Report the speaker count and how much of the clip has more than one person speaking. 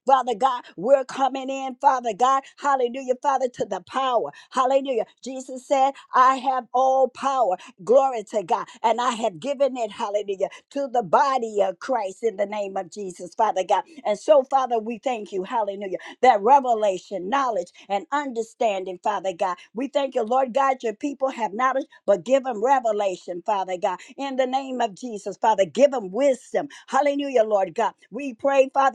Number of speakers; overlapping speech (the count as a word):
one, no overlap